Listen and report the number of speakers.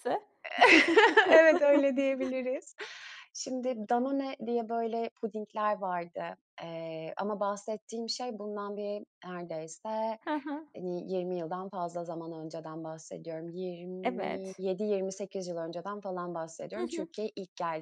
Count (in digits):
2